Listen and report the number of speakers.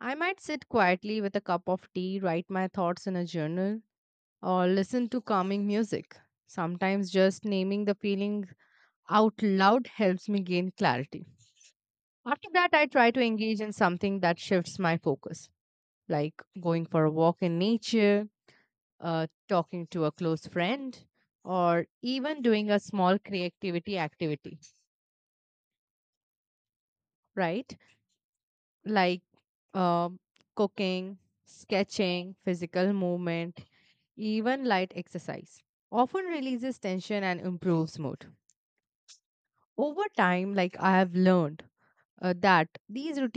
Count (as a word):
one